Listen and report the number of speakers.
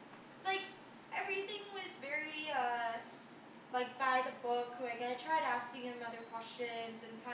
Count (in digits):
1